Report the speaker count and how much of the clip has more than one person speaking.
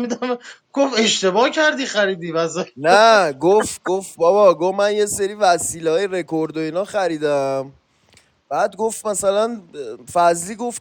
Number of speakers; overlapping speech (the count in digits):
2, no overlap